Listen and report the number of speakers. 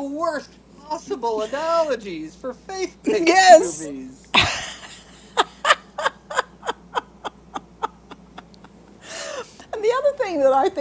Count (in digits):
2